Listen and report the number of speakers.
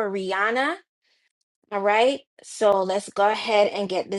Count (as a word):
one